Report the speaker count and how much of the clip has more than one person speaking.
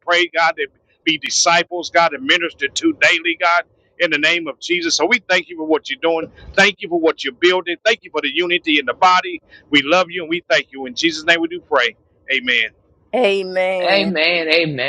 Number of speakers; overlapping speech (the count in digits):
3, about 2%